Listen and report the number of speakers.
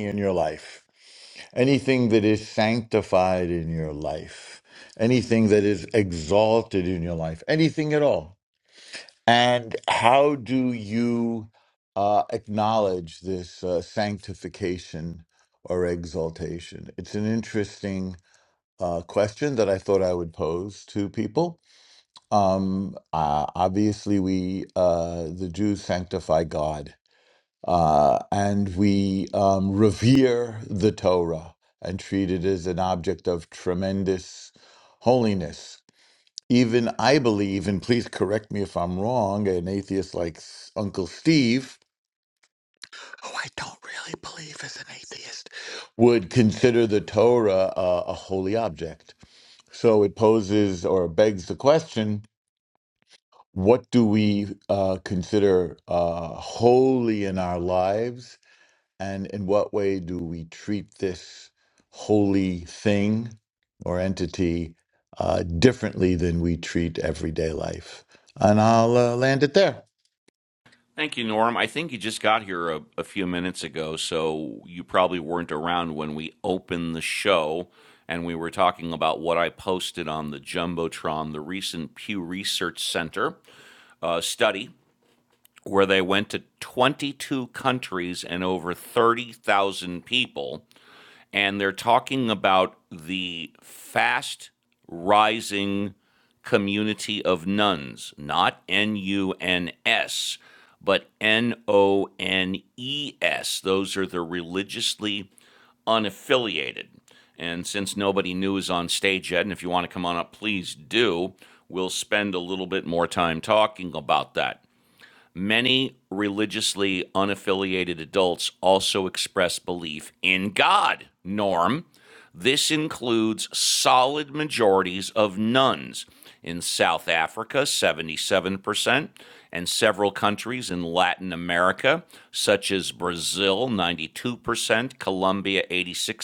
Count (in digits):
2